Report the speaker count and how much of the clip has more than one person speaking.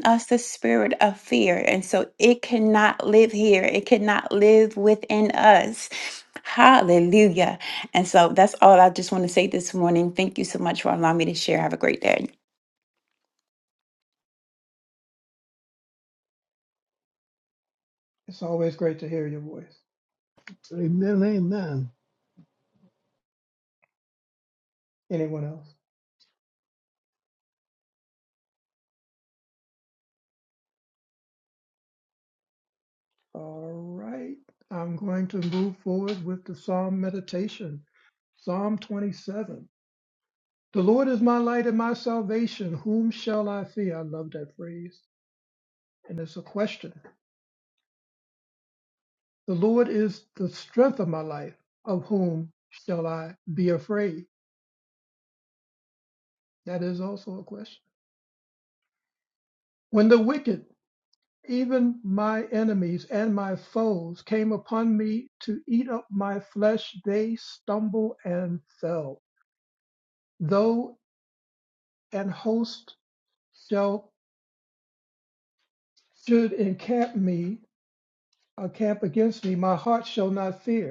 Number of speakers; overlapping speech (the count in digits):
3, no overlap